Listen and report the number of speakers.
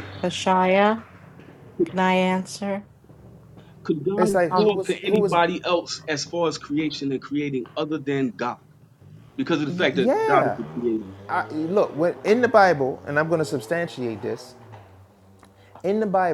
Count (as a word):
three